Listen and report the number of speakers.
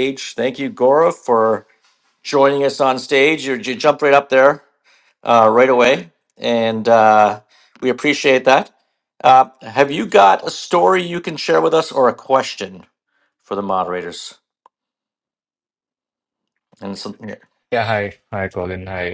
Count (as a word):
two